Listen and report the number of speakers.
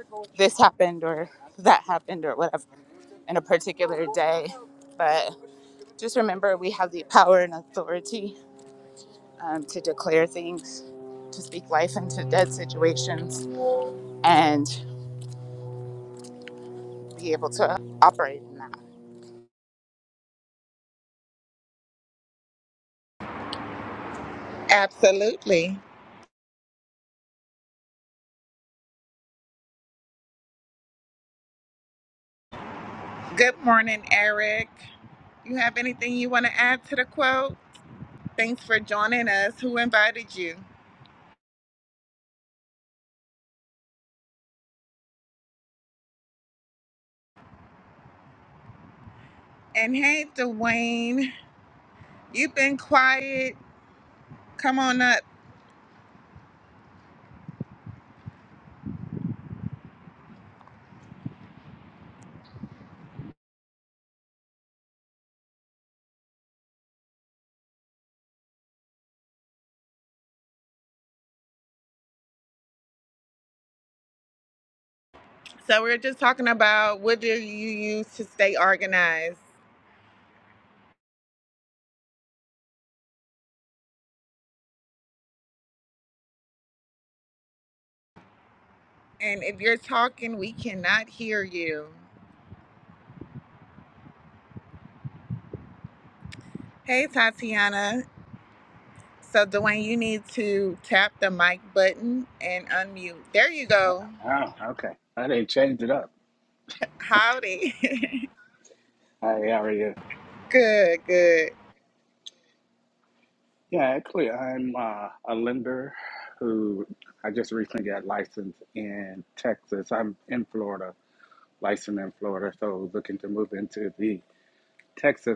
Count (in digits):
3